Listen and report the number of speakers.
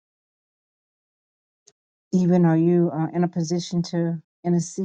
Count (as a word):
one